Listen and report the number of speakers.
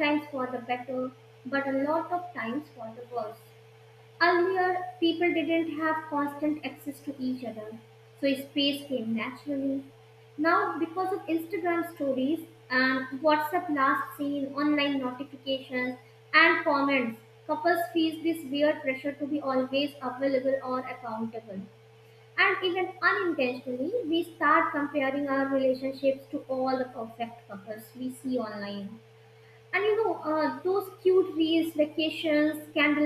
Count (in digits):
1